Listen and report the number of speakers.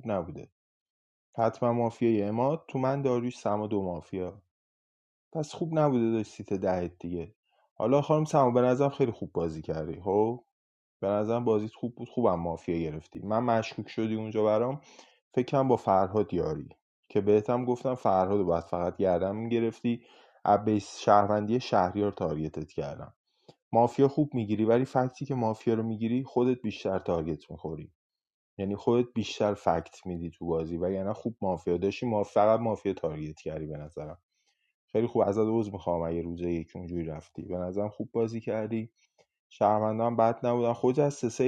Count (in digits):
1